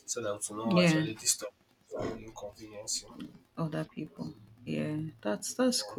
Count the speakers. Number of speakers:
two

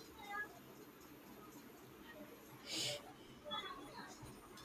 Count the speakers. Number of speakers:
zero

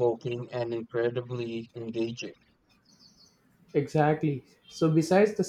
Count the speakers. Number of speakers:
two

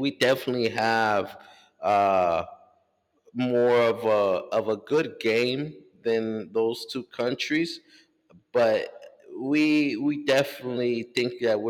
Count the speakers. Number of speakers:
one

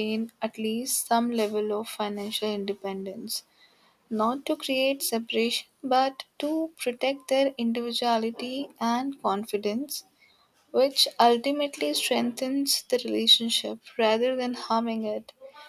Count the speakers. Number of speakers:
one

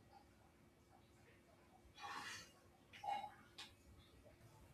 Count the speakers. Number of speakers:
zero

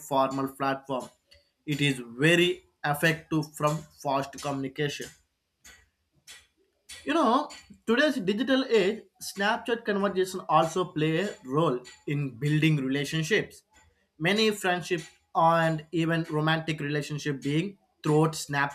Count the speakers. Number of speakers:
one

